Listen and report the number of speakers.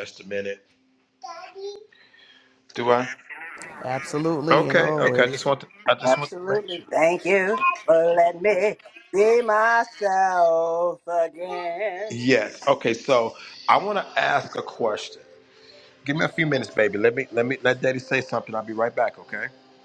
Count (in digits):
3